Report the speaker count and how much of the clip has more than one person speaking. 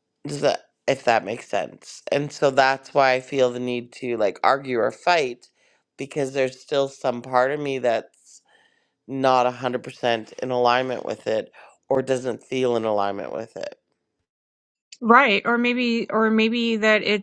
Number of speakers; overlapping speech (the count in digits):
2, no overlap